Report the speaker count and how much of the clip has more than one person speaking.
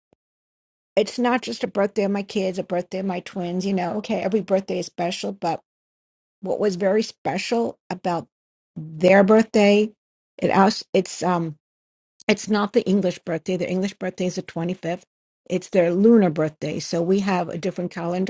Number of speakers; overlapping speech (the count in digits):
1, no overlap